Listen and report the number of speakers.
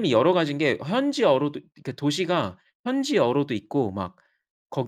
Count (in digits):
1